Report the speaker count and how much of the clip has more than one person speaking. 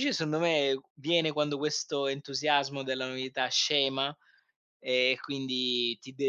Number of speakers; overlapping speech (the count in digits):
1, no overlap